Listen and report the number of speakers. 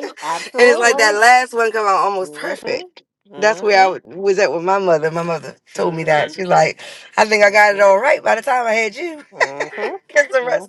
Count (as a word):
two